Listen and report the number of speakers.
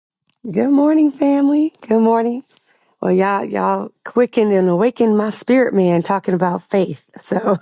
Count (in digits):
1